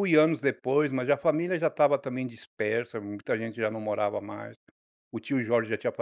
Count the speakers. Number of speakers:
1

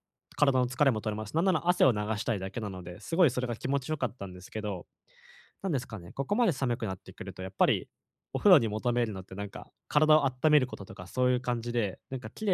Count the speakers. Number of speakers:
1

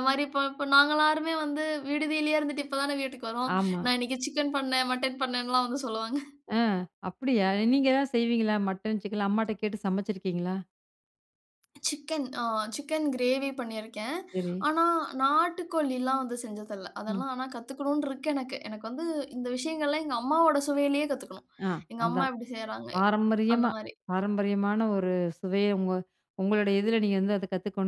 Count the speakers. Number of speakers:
2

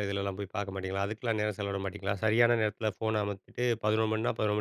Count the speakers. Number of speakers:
1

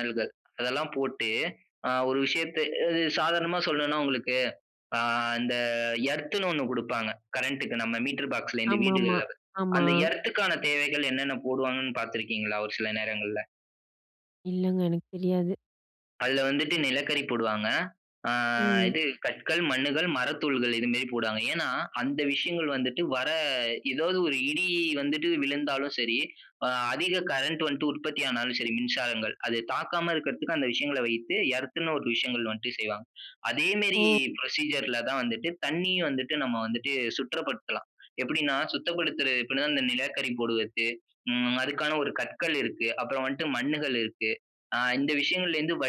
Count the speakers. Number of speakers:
2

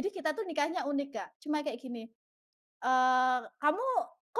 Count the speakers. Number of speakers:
1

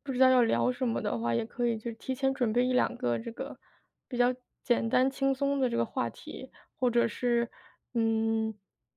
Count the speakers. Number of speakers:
1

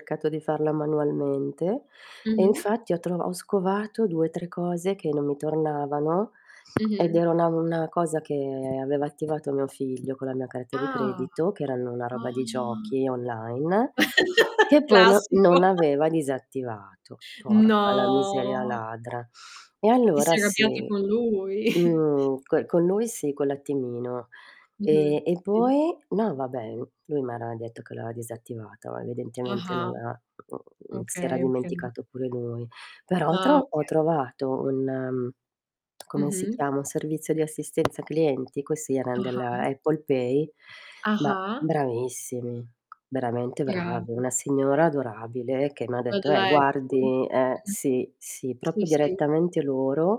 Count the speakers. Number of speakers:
2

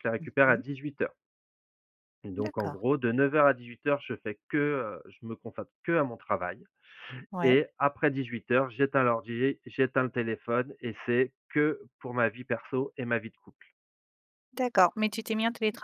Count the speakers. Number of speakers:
2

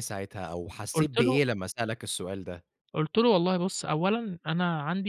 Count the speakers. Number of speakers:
2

